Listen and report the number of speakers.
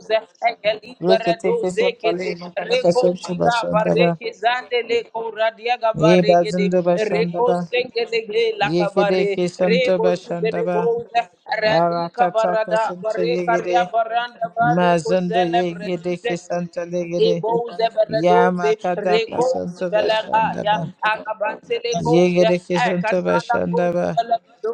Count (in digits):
2